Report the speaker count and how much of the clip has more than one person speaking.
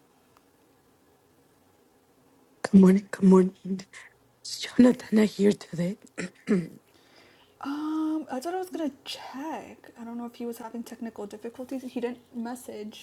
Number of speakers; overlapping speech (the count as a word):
two, no overlap